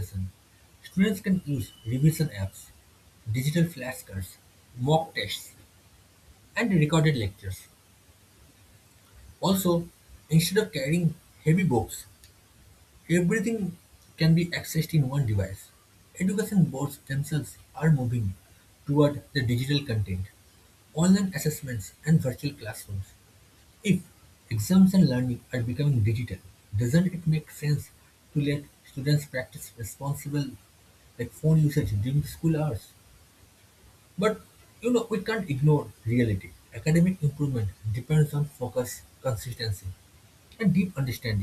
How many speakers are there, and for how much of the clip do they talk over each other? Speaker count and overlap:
1, no overlap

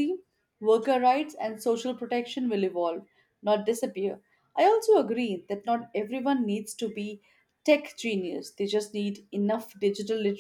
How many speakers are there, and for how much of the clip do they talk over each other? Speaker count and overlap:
1, no overlap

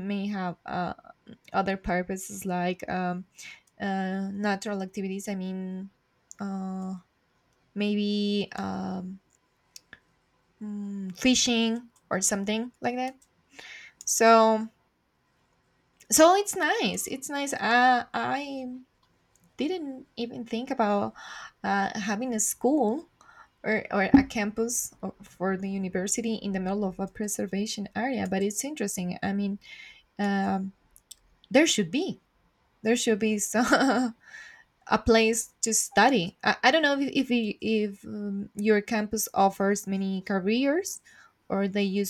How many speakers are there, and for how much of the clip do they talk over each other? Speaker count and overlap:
1, no overlap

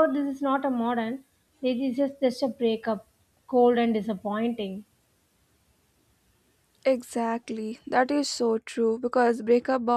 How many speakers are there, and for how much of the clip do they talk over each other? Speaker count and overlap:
2, no overlap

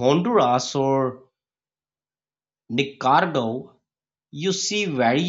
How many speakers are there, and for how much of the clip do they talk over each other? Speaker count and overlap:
1, no overlap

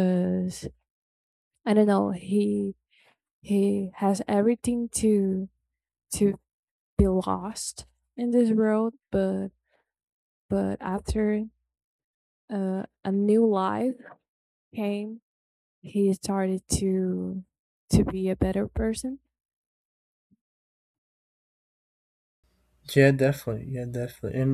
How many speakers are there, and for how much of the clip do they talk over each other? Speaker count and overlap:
2, no overlap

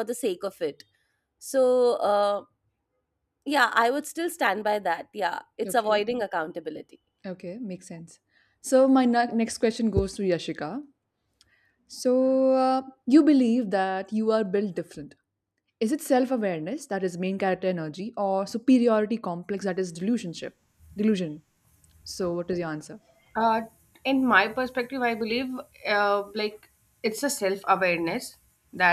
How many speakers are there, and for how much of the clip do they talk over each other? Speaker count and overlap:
3, about 1%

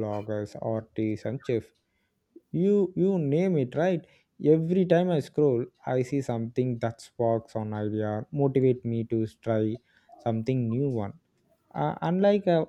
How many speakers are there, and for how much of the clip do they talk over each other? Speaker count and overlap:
1, no overlap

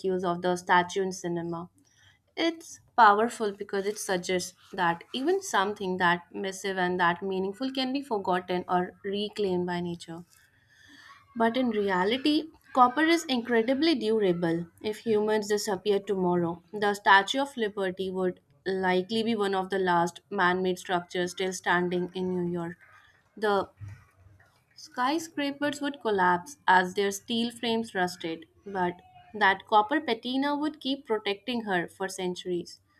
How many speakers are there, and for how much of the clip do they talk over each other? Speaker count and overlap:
1, no overlap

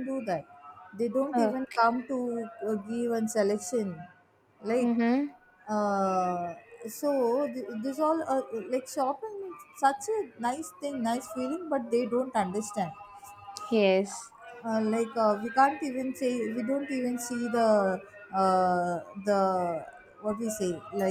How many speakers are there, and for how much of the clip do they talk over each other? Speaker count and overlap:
2, about 2%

